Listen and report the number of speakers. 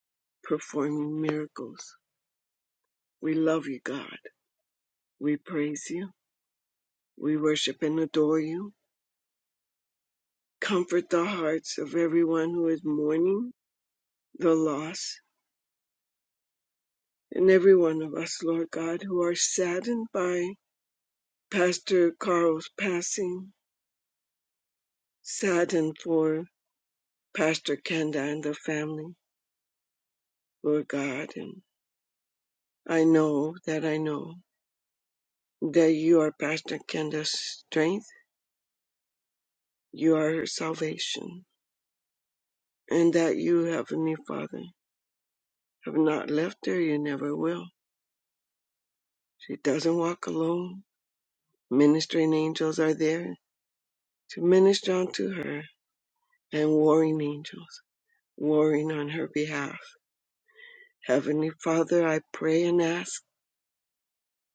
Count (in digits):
1